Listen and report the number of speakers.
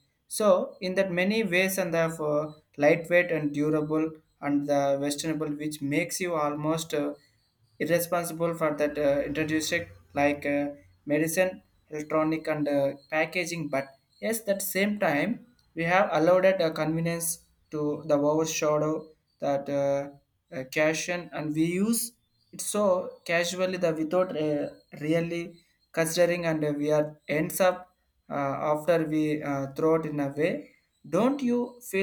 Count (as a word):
one